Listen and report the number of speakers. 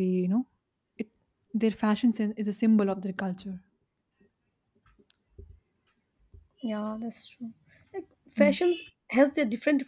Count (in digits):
2